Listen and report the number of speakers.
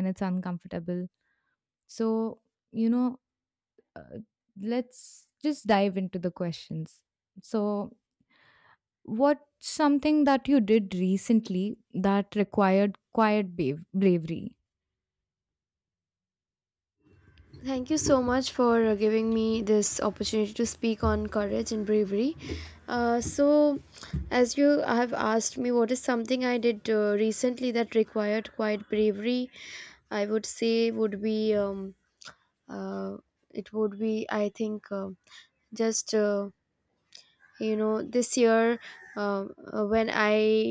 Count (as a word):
two